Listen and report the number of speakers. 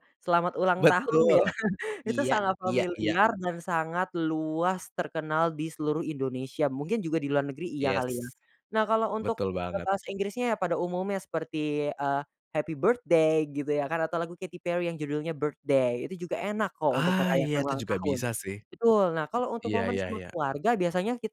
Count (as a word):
two